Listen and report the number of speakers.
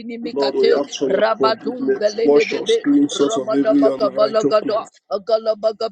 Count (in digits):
2